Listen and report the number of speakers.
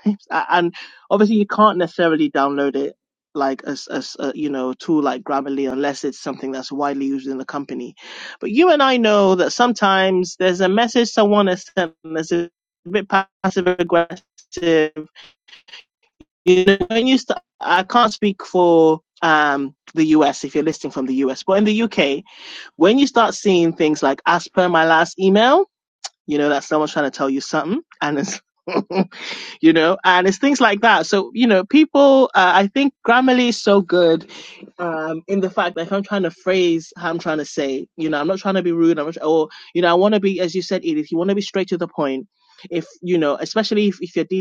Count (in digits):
1